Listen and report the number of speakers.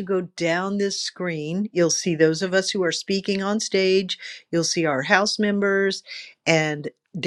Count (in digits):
1